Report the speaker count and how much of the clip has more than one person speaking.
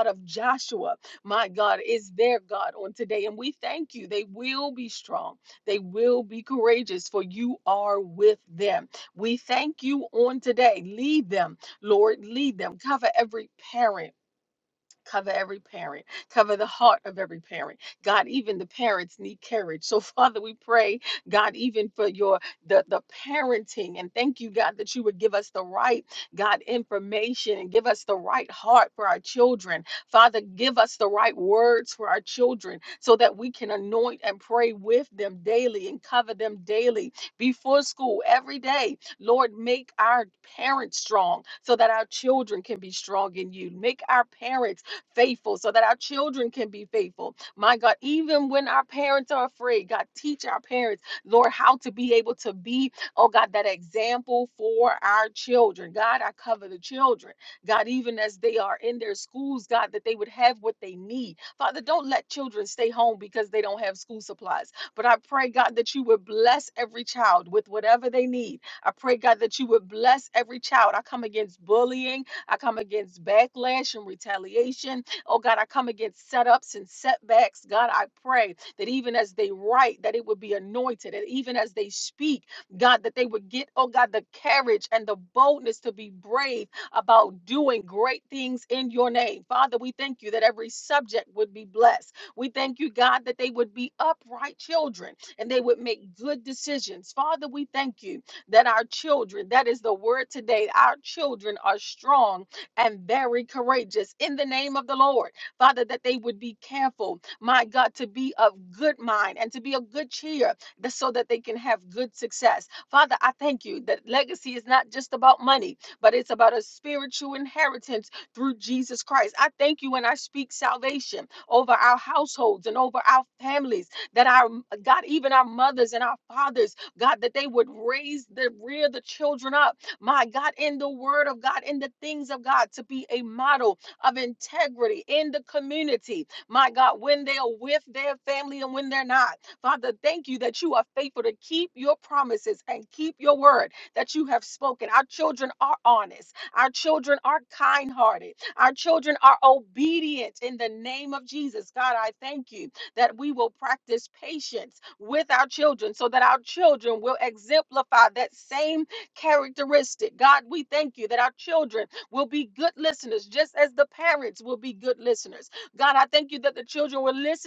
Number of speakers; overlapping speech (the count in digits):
1, no overlap